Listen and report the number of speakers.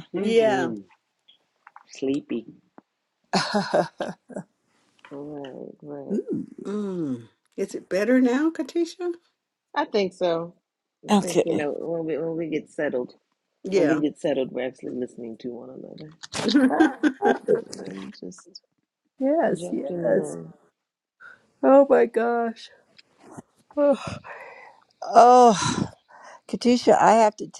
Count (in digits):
4